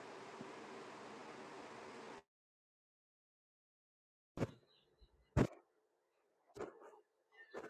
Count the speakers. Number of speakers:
zero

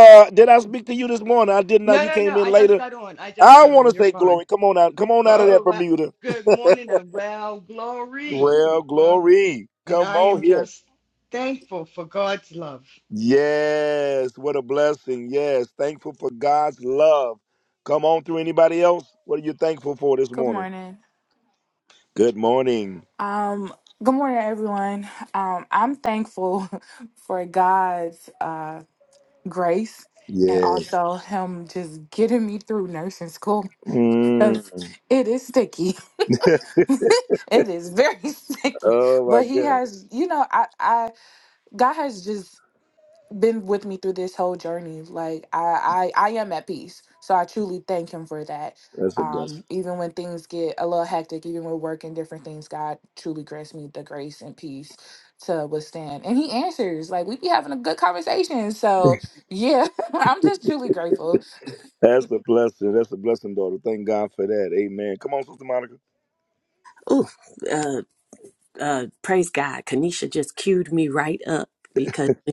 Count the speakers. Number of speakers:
four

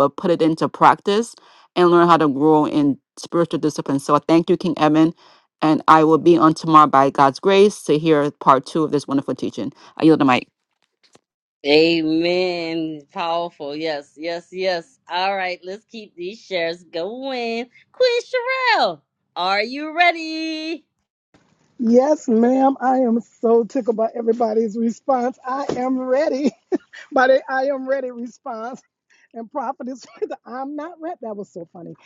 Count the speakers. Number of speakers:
three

